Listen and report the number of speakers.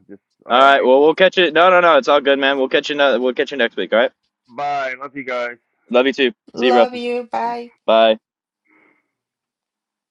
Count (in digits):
3